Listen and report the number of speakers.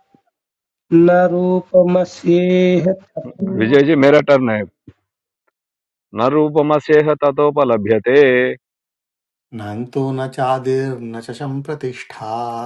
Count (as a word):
three